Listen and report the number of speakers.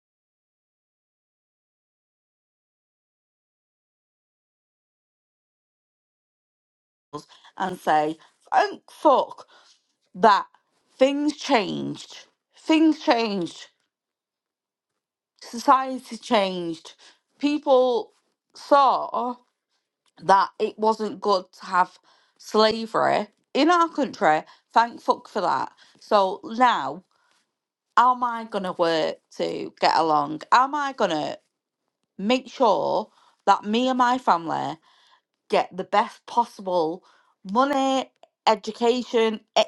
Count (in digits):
1